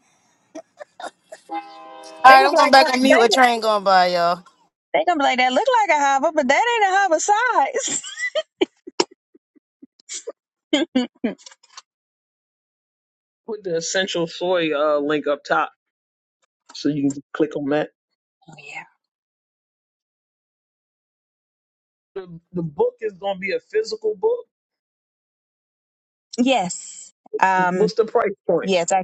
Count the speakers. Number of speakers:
three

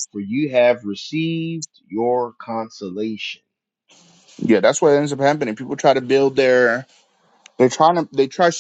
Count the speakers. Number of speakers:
two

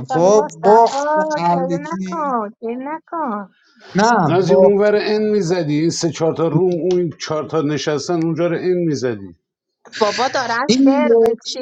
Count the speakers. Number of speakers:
three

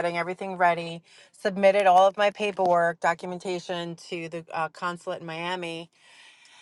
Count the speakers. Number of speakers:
one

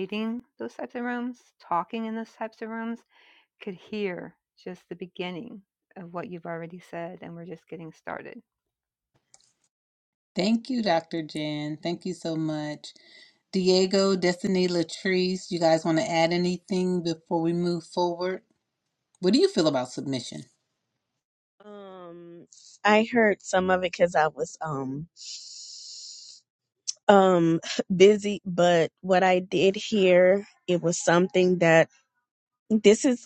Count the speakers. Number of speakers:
three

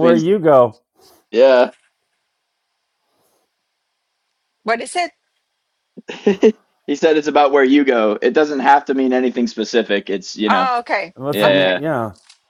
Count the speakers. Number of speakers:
three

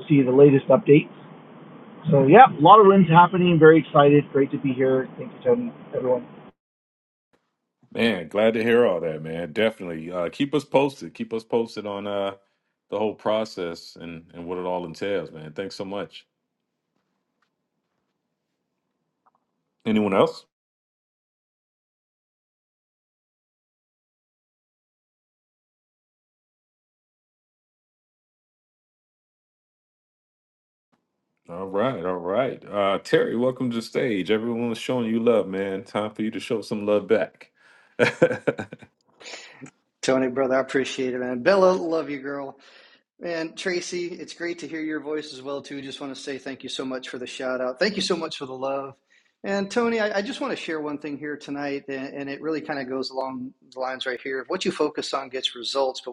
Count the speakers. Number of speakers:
three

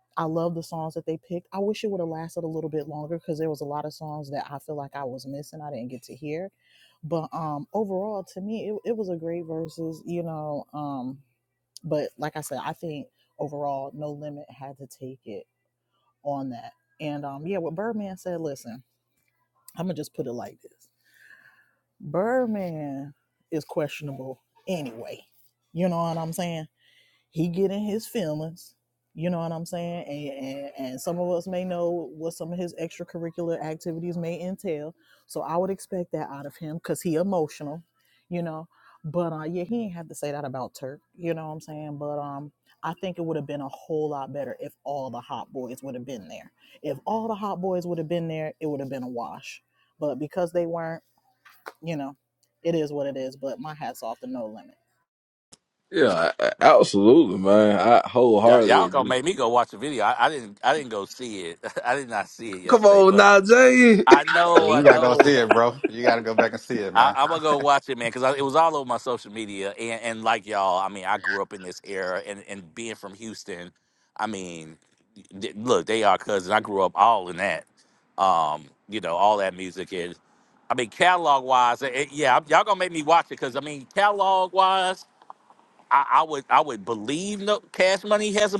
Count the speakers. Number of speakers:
four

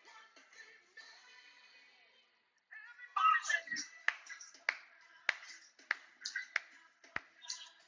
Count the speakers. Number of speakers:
zero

